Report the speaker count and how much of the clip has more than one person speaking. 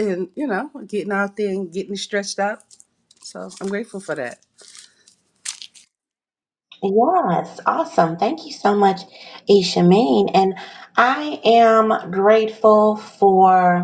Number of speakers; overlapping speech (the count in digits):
2, no overlap